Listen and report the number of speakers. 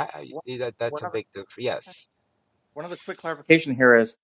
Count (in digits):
2